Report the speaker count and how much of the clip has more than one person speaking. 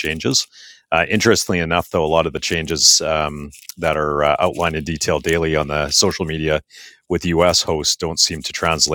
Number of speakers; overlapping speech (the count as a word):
one, no overlap